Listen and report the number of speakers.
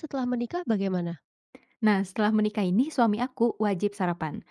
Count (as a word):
two